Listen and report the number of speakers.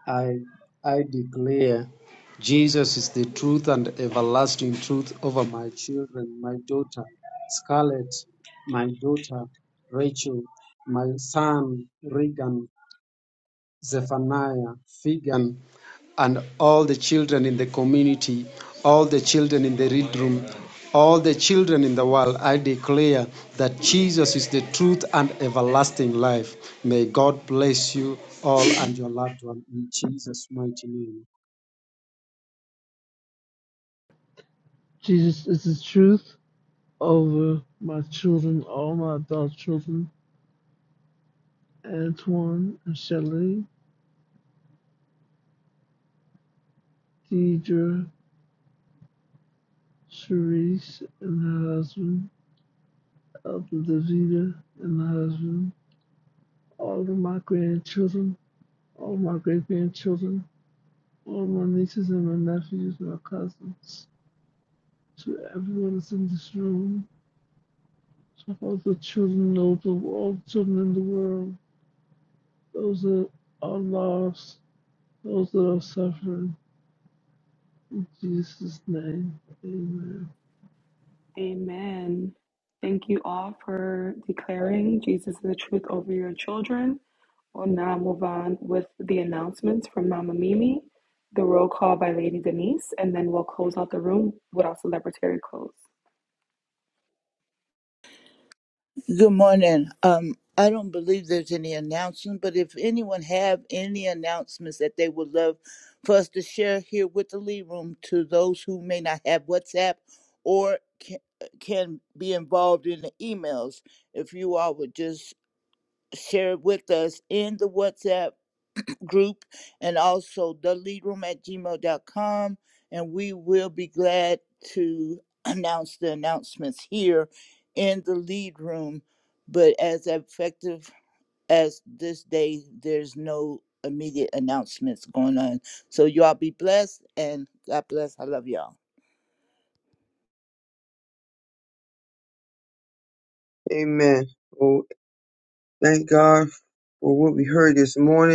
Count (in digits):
5